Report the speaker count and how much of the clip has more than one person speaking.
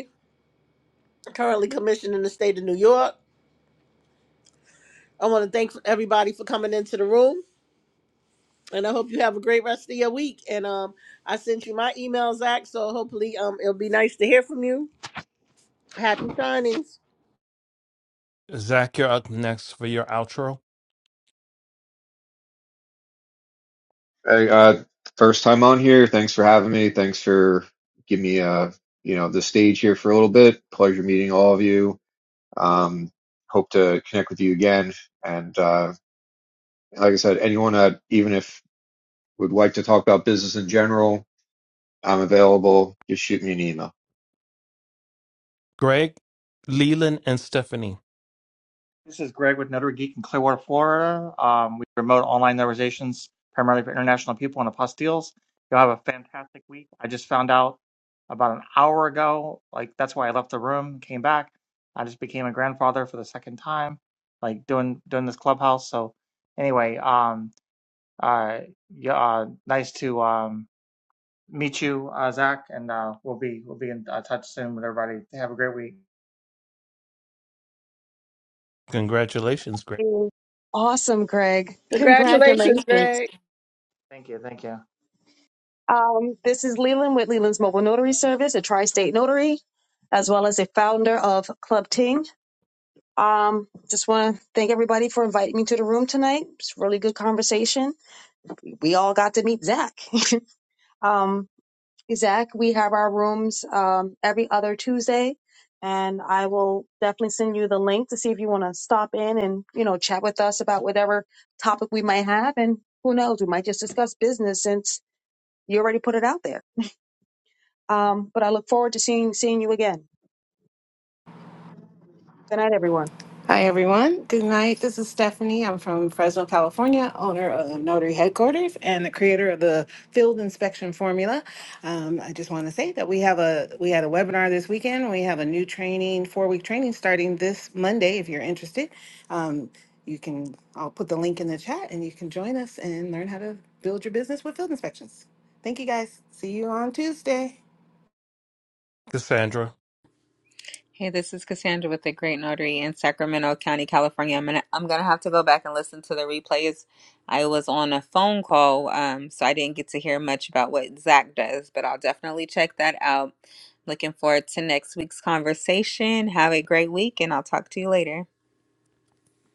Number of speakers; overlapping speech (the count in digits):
7, about 1%